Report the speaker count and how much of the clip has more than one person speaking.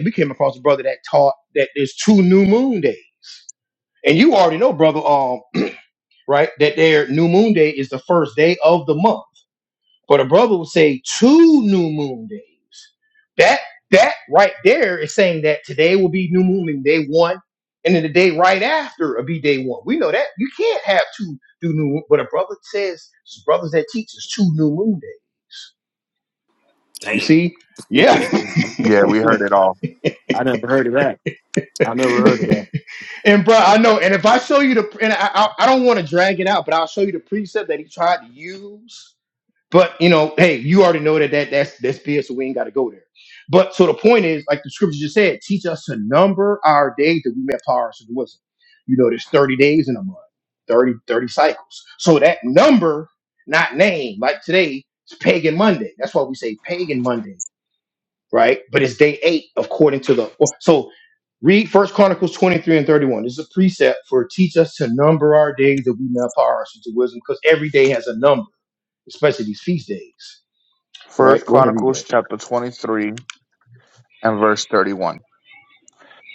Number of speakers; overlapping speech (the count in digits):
3, about 1%